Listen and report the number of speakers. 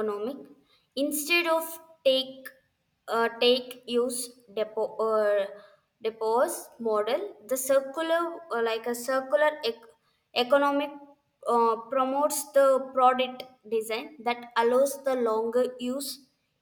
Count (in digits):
1